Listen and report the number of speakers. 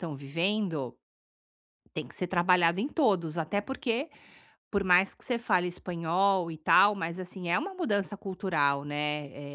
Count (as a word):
one